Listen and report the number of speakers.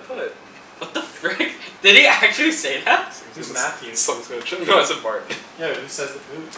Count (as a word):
three